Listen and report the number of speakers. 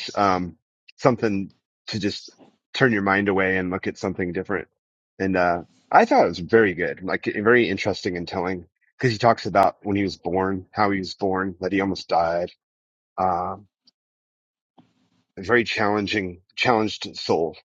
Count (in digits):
1